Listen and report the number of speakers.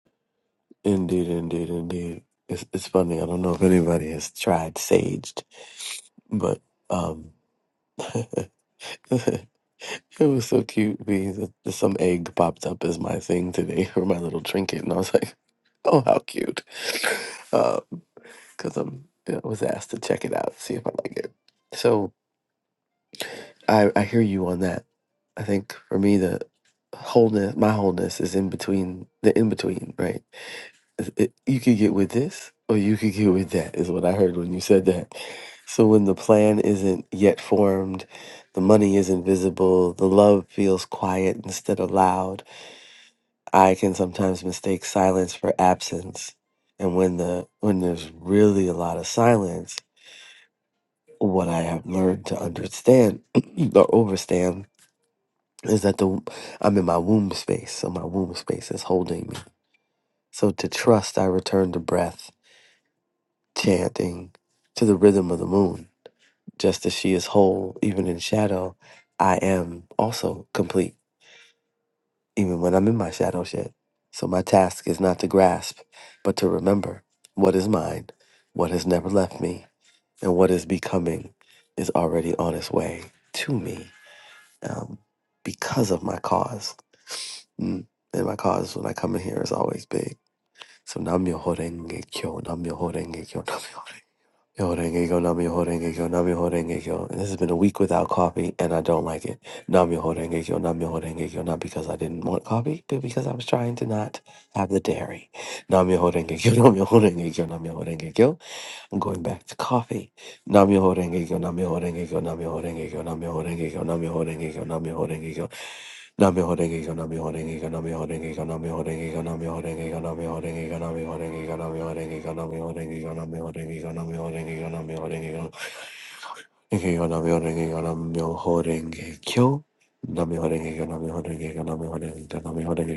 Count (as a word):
one